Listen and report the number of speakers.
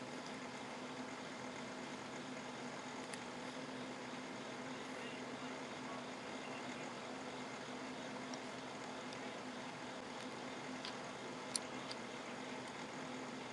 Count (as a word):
zero